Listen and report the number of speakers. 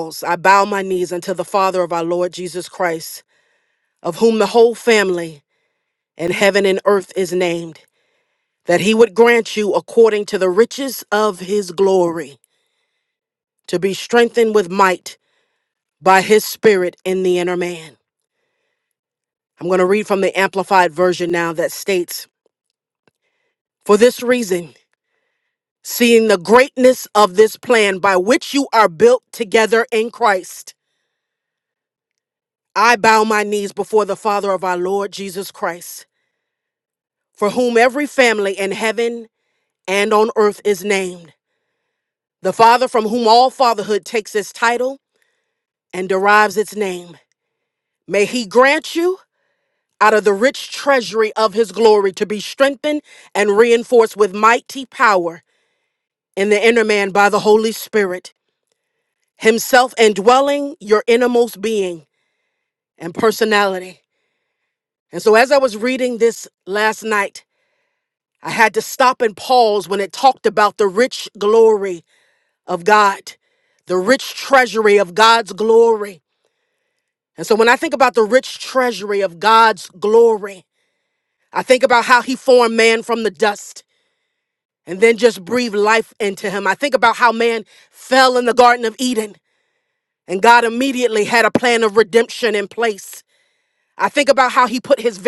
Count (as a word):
one